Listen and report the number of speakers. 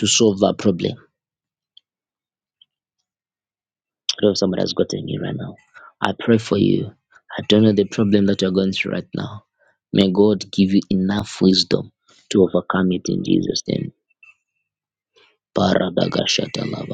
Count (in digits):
1